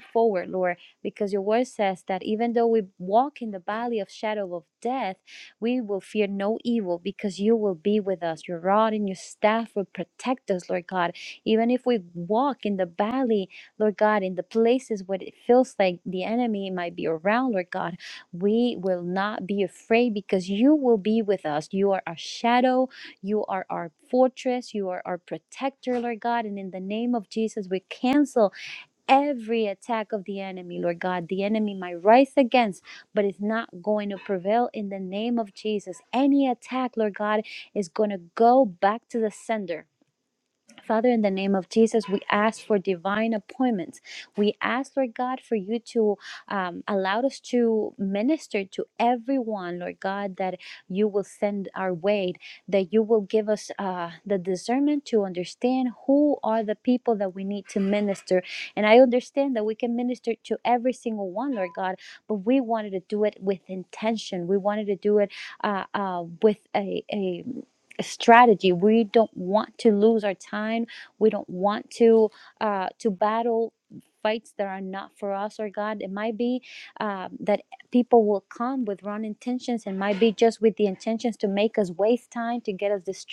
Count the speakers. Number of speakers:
1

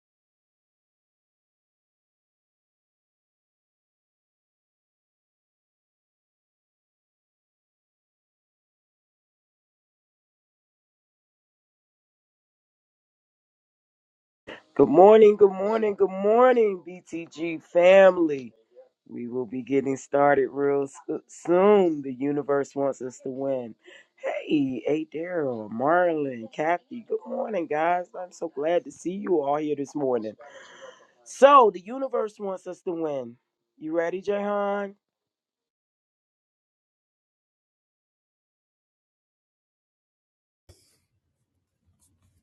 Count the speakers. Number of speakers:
1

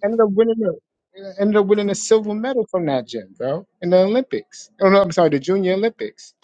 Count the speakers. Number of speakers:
1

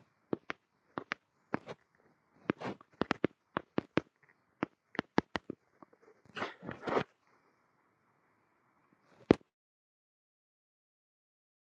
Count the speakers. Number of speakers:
0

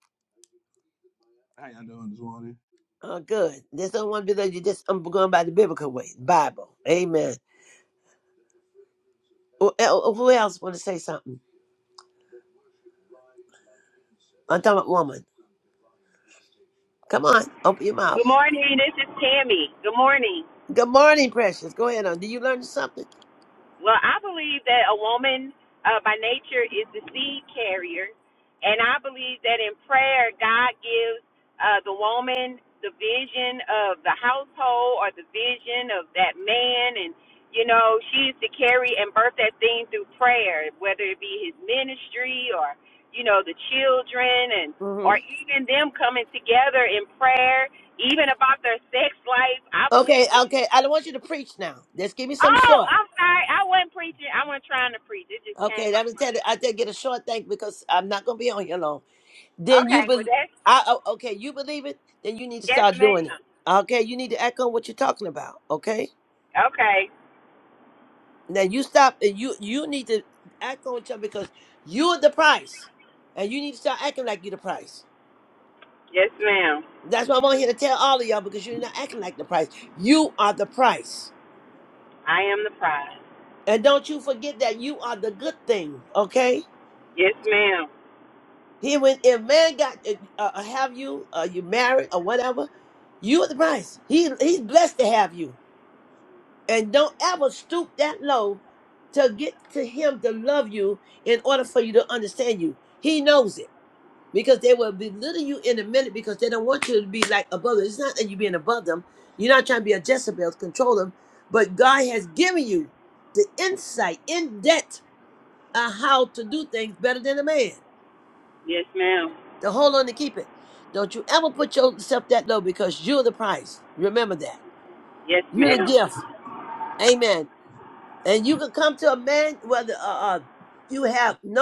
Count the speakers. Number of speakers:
3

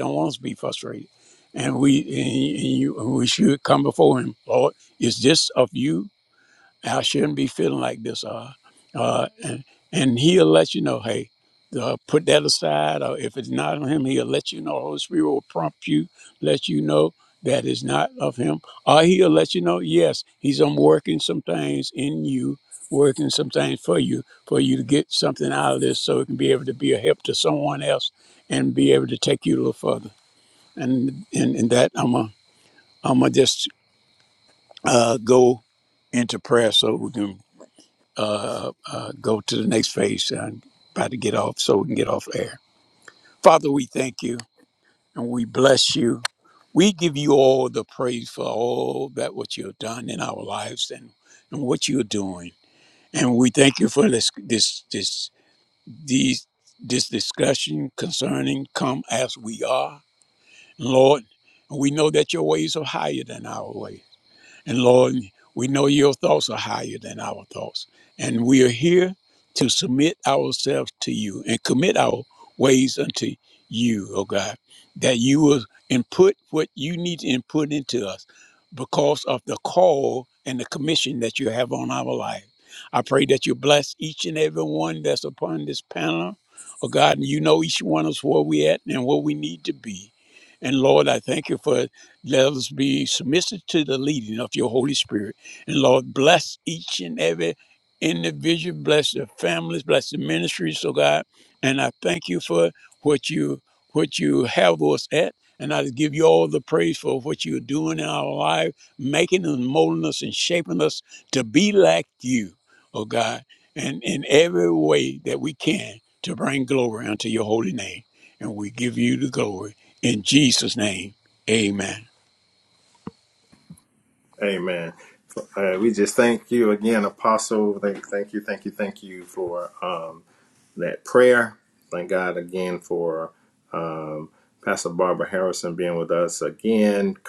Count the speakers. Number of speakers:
2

